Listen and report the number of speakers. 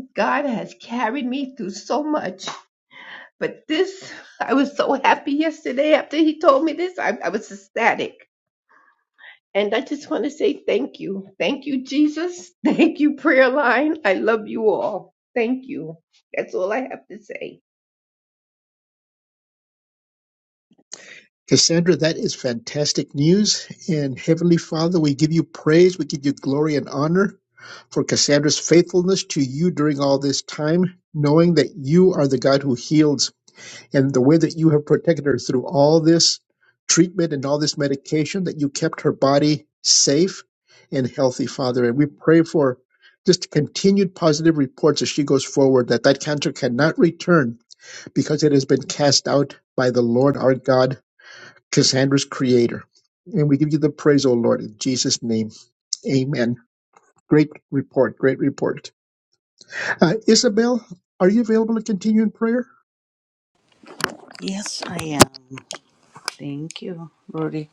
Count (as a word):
three